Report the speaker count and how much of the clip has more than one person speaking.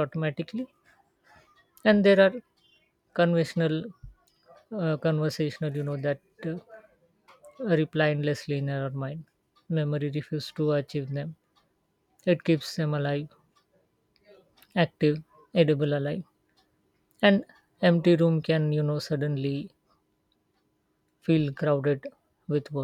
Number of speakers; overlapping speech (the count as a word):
one, no overlap